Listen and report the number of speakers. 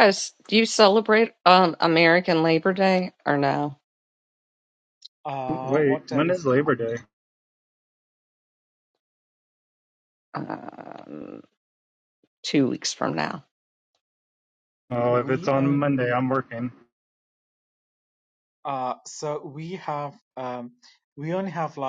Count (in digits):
3